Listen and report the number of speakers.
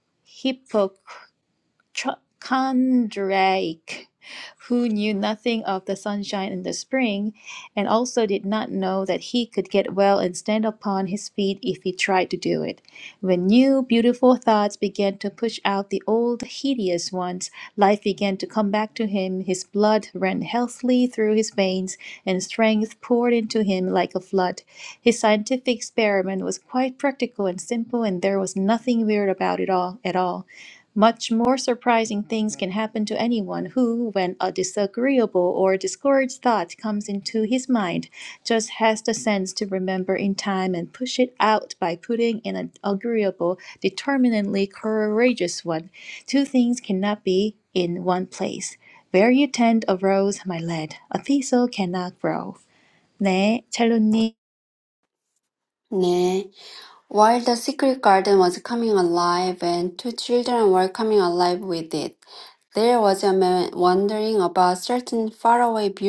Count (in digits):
2